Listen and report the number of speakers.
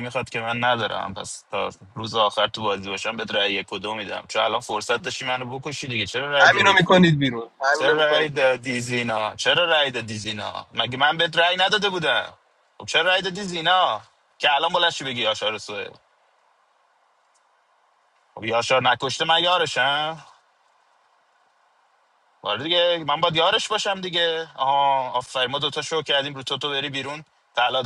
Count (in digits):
2